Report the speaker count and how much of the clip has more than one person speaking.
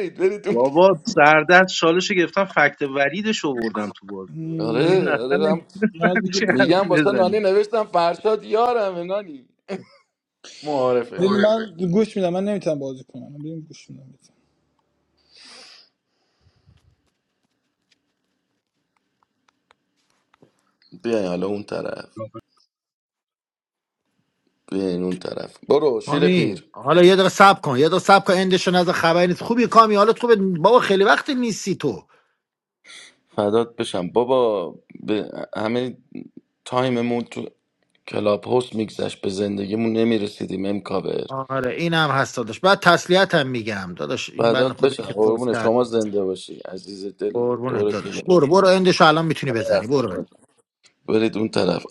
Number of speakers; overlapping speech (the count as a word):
four, about 11%